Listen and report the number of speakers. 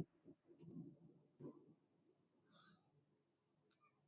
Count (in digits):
0